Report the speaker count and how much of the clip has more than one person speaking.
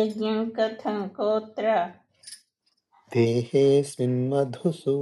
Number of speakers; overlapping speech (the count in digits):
2, no overlap